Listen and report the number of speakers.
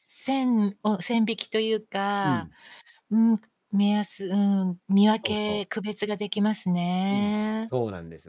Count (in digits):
2